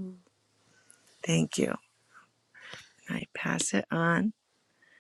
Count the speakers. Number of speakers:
one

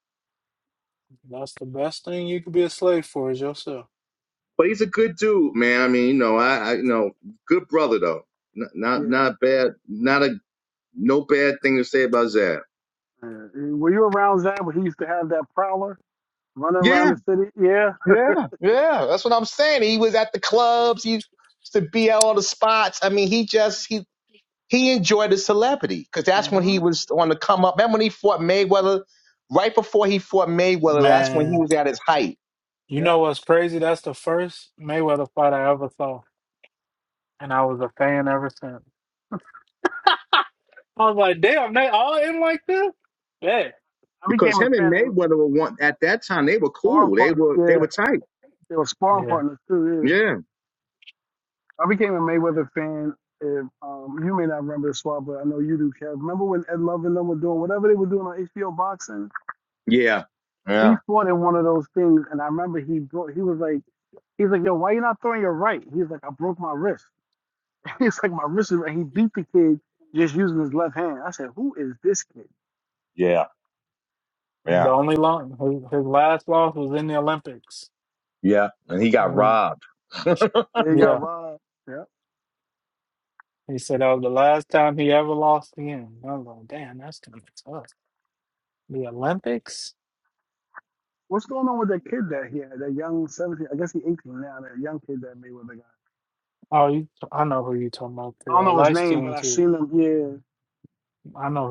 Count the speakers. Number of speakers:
three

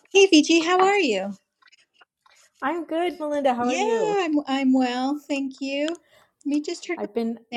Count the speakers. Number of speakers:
two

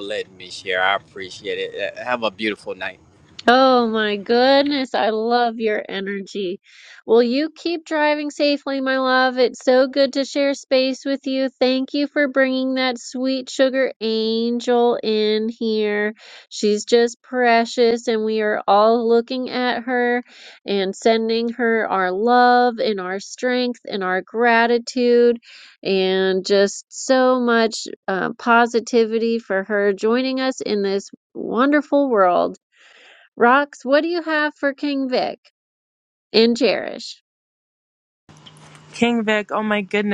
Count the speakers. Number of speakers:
three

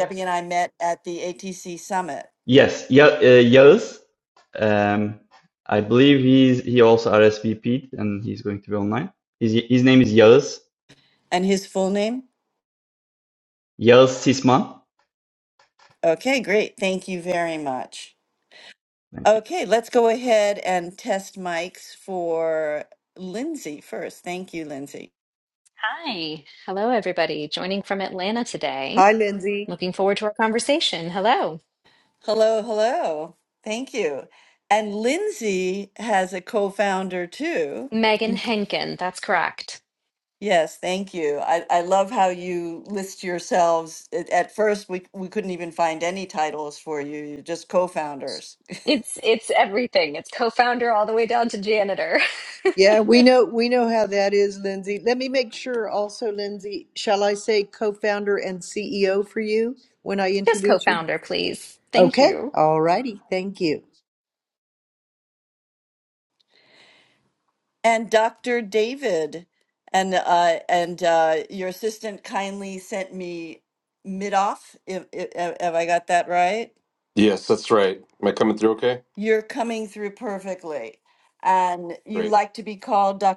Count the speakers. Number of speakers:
five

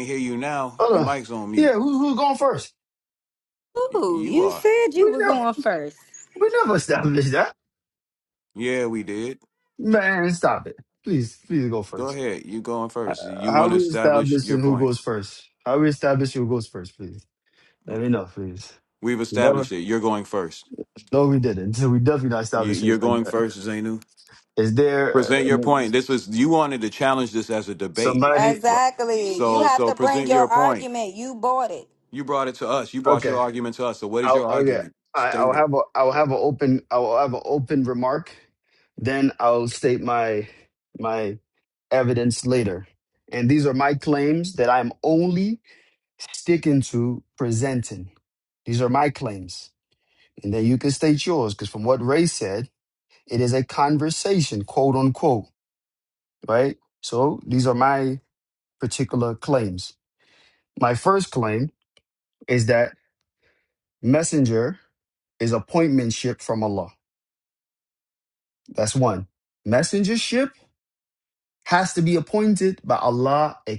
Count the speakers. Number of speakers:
three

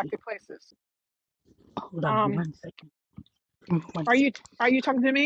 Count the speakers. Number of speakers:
two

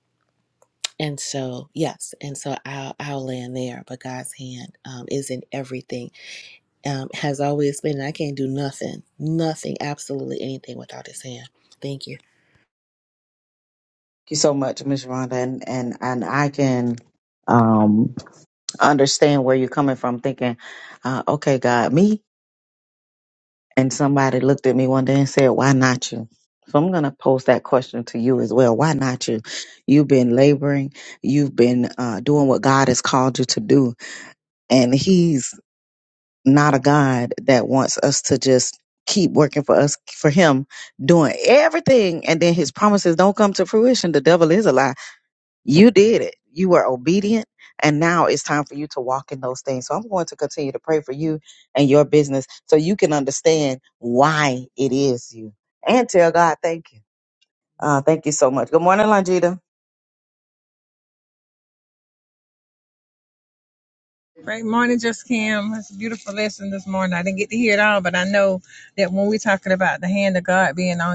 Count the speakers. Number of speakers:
three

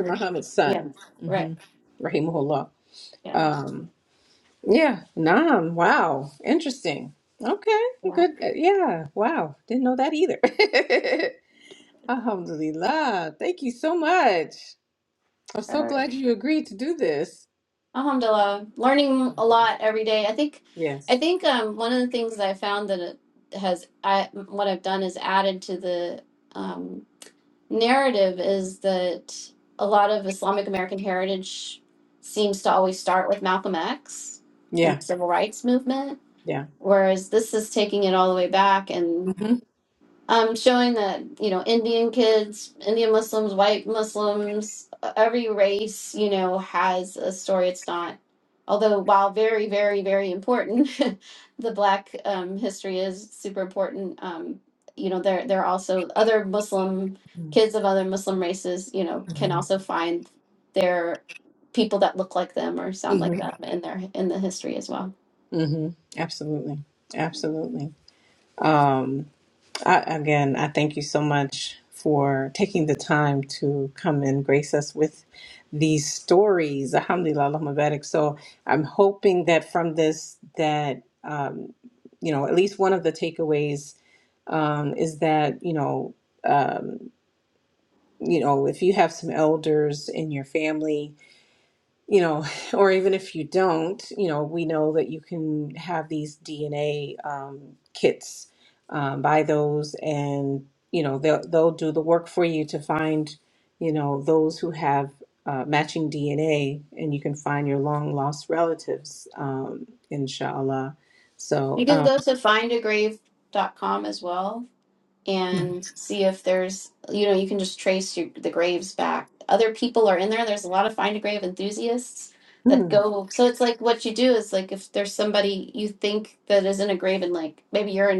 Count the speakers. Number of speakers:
two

